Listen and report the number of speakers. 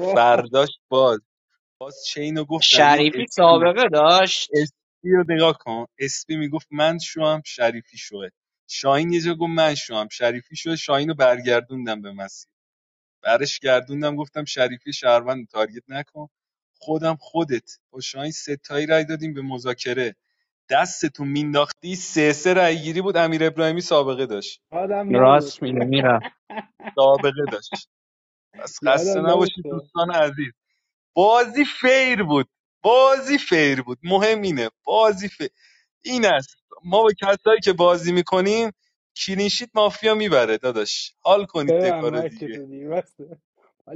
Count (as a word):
three